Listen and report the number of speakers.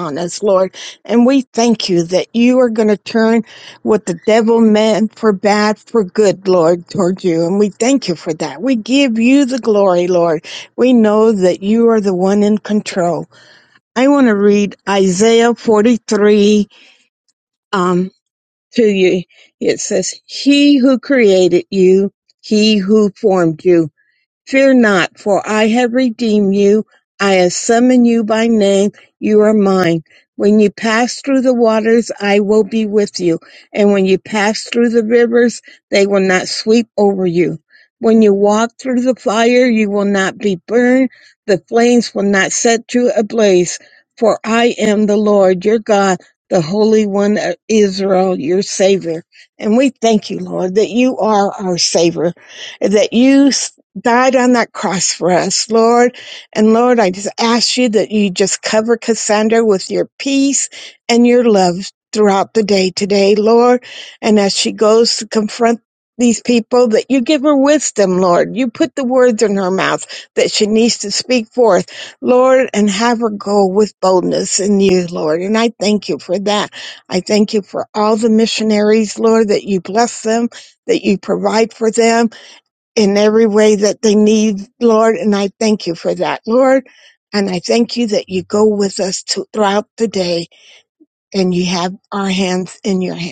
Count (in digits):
1